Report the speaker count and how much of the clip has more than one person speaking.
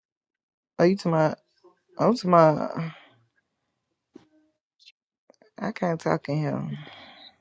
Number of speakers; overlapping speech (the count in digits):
1, no overlap